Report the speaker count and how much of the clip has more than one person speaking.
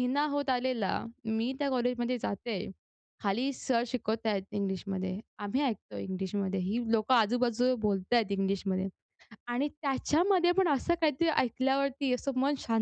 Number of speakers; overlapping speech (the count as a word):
one, no overlap